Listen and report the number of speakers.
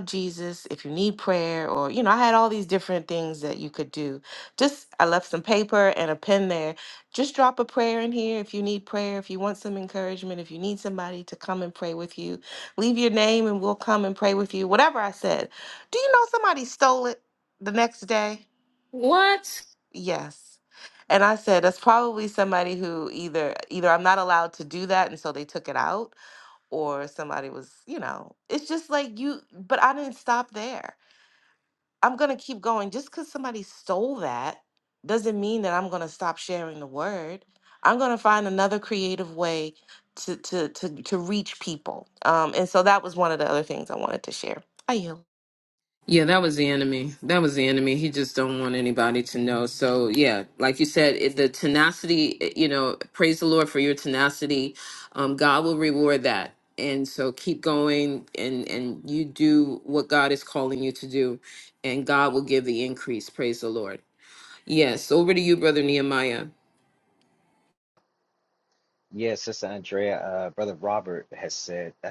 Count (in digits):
3